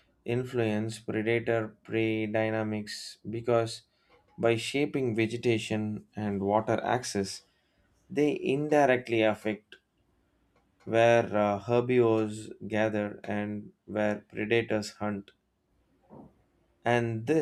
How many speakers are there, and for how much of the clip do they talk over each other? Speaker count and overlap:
1, no overlap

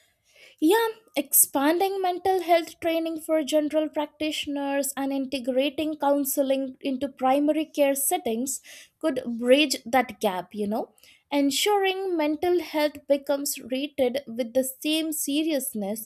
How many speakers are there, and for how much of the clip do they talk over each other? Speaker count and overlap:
1, no overlap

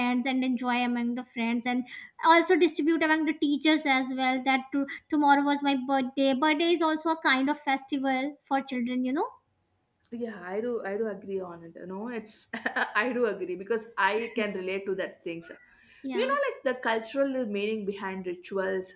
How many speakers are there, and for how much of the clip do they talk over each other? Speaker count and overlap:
2, about 1%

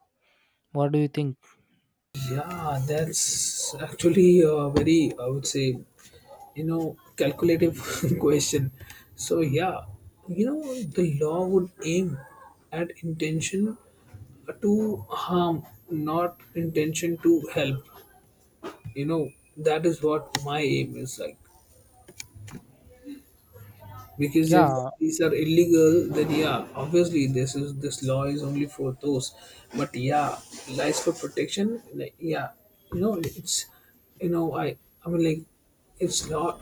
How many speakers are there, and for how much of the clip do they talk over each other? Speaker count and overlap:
2, about 1%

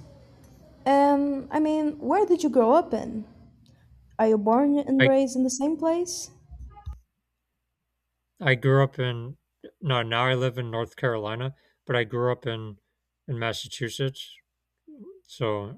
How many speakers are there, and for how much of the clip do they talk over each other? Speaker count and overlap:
2, about 1%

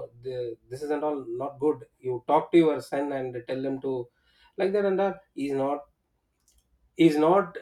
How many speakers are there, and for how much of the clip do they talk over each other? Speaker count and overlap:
1, no overlap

